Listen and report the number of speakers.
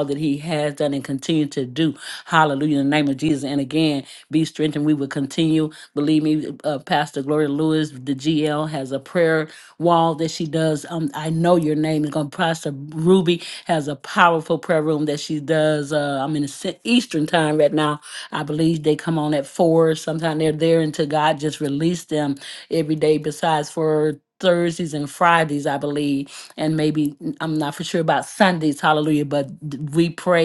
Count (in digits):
1